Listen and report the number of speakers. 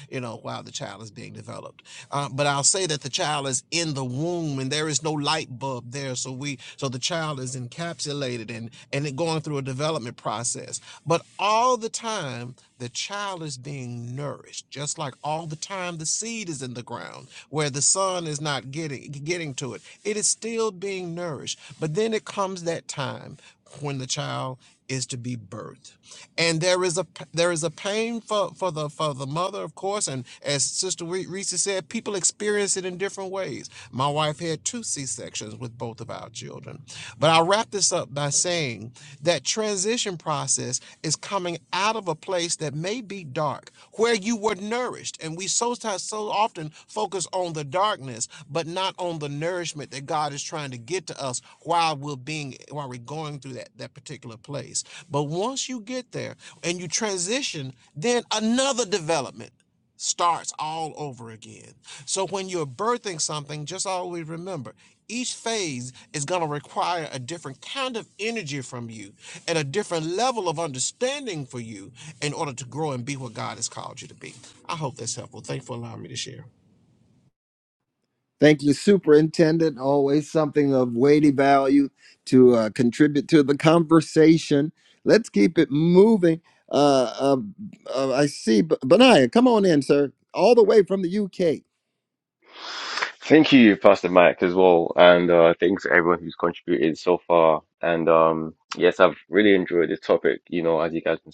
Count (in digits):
3